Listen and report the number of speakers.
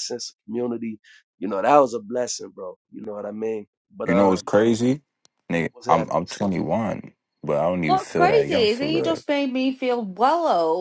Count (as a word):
three